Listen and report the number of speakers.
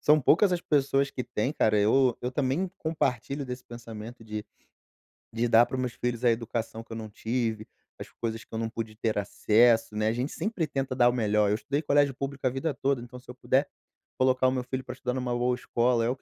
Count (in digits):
1